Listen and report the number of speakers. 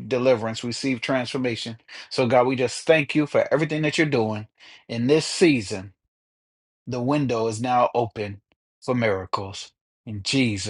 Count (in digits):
1